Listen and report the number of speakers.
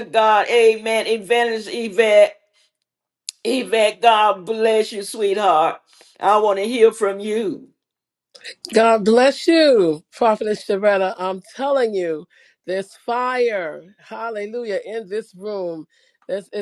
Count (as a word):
two